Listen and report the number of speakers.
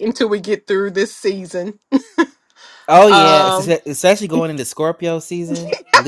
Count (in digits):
2